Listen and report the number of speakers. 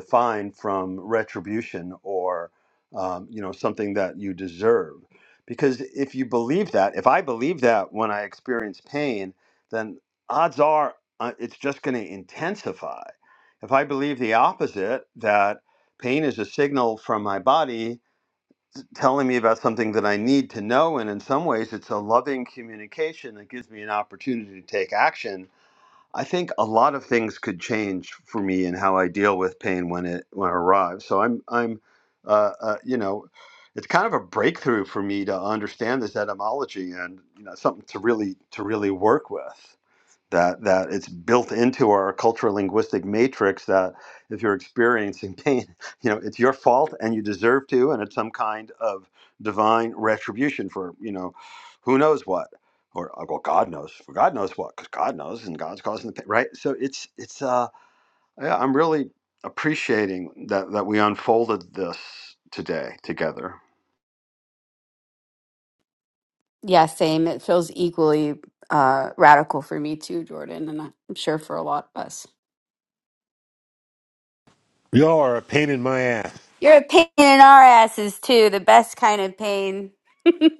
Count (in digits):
3